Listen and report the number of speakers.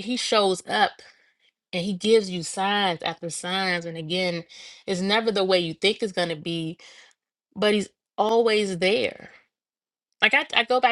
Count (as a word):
one